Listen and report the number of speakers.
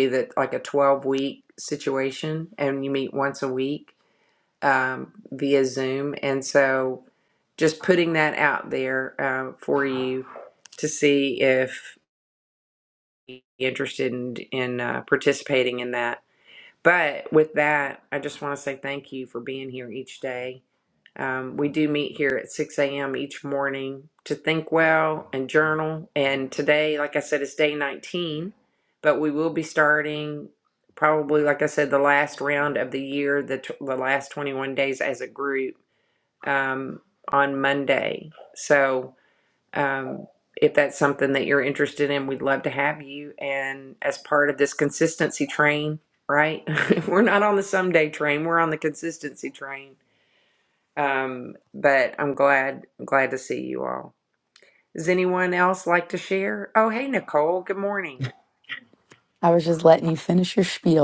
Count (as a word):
two